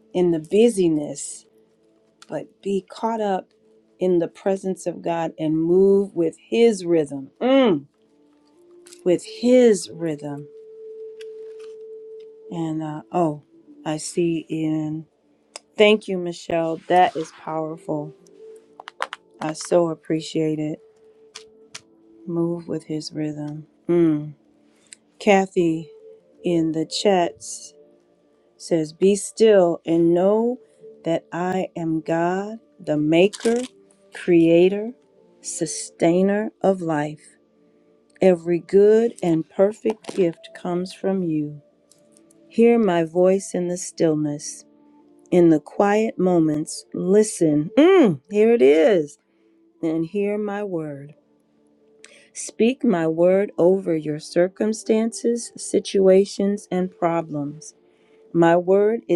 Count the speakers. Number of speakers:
1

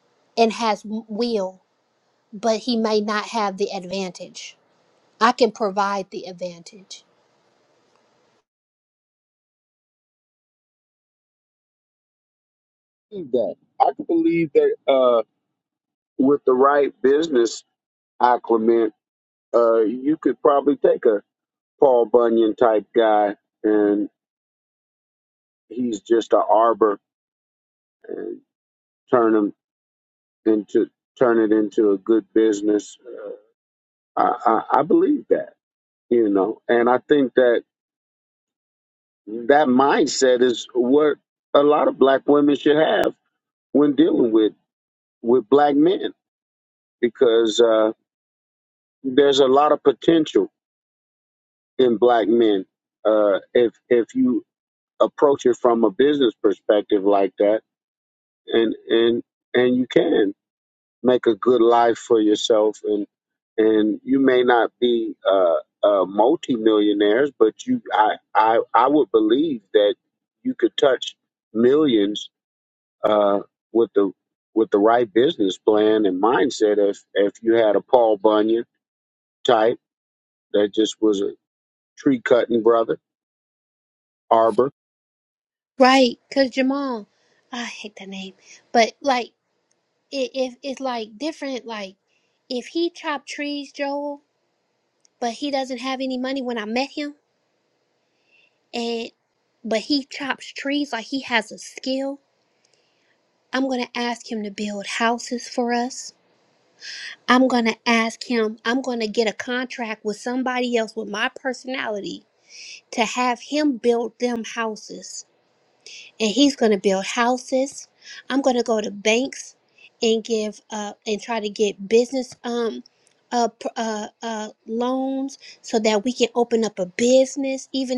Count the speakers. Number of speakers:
2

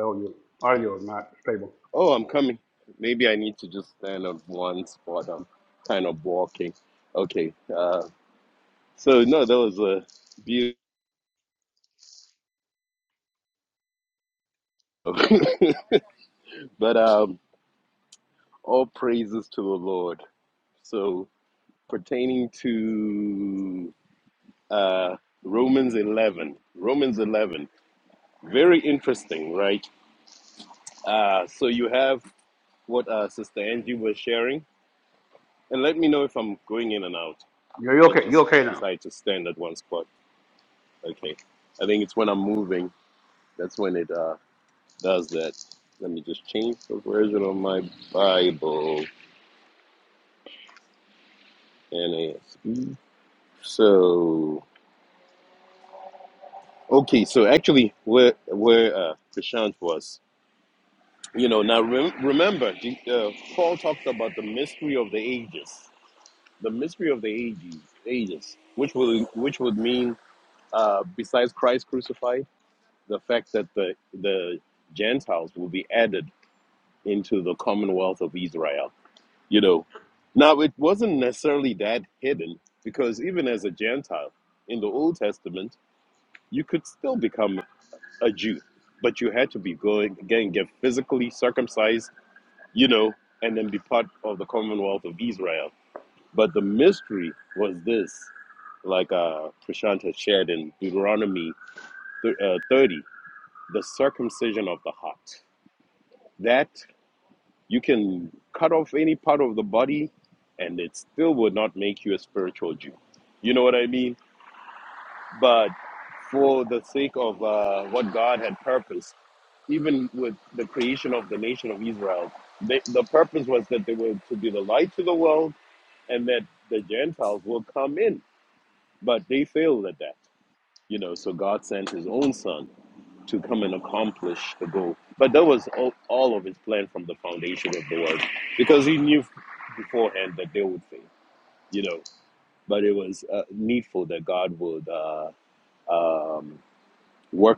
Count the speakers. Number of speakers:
2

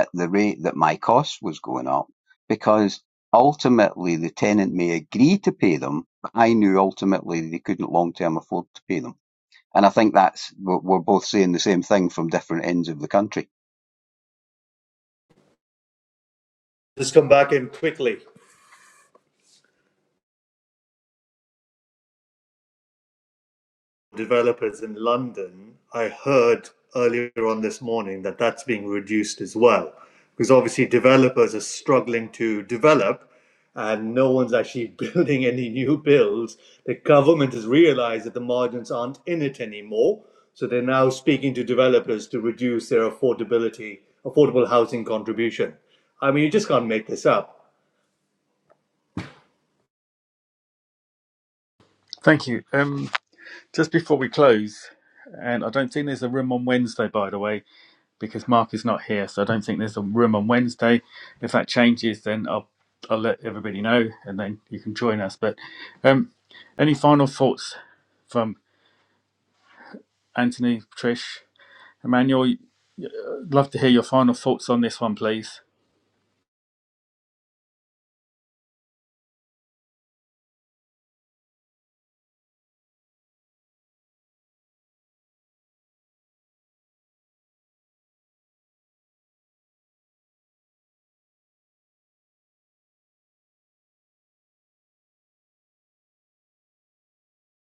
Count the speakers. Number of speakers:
3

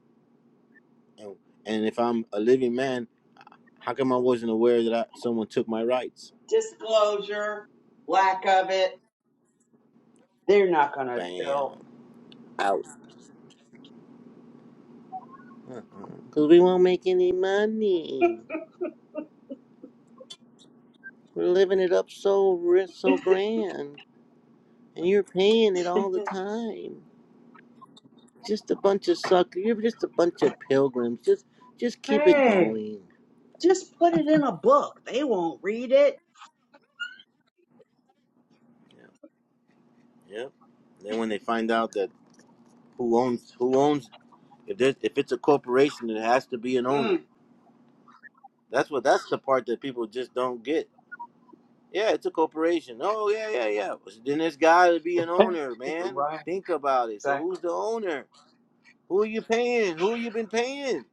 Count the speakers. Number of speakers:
2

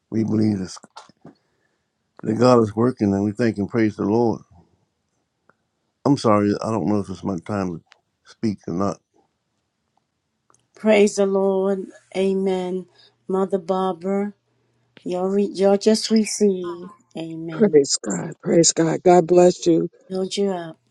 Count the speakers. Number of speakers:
3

